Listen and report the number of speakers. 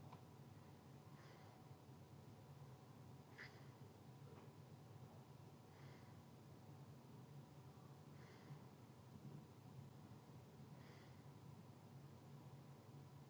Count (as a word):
zero